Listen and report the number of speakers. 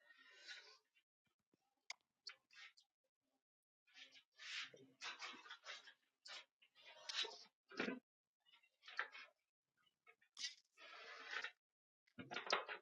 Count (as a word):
zero